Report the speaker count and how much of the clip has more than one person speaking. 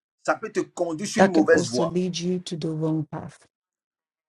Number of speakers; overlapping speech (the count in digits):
2, about 17%